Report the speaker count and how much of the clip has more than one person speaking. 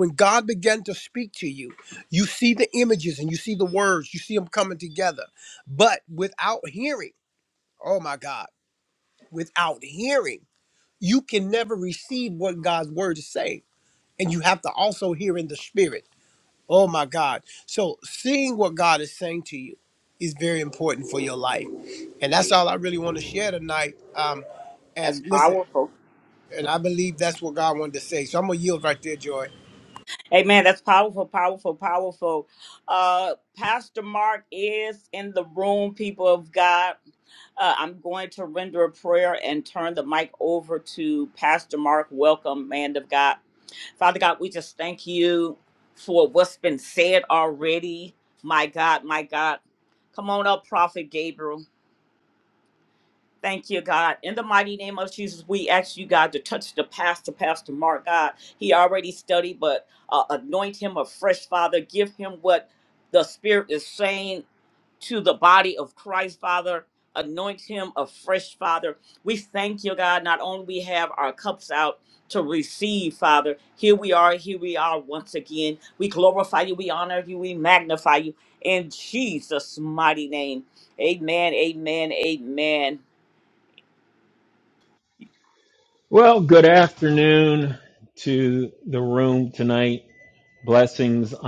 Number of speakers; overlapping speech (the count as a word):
three, about 1%